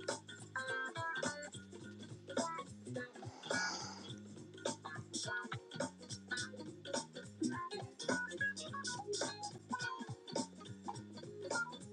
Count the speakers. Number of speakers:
0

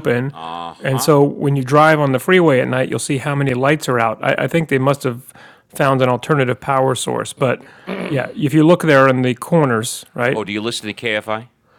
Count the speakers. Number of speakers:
2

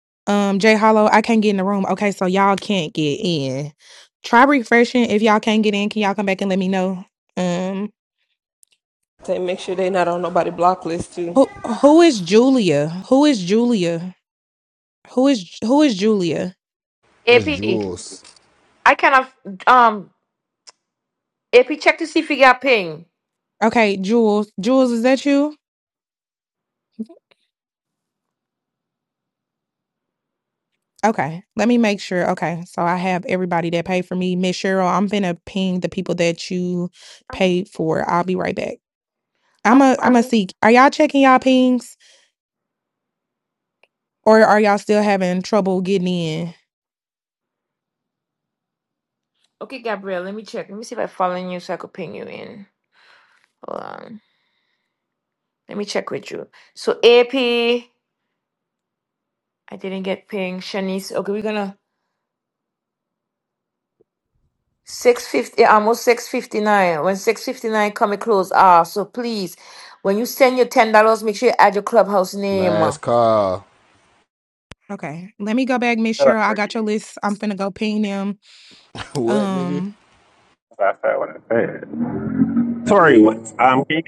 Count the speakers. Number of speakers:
5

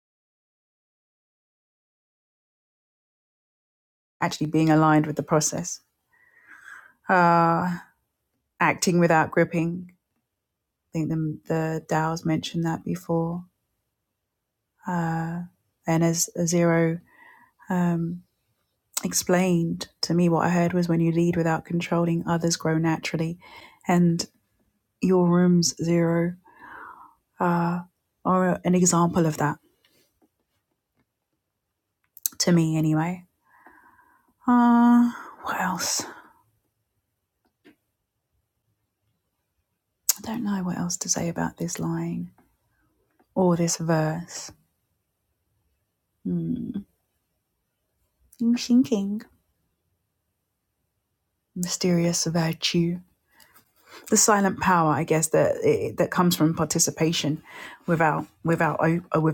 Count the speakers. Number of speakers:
1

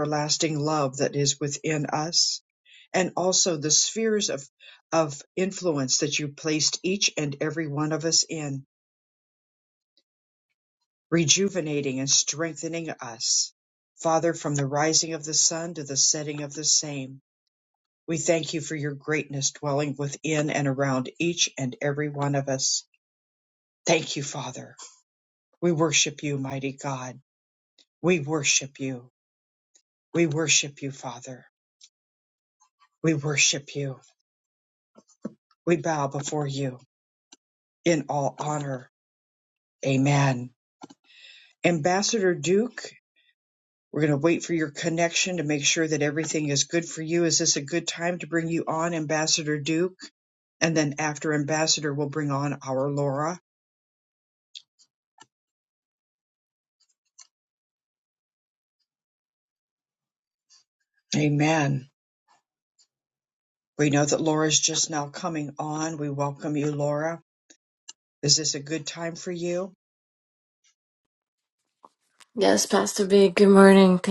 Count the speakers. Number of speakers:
2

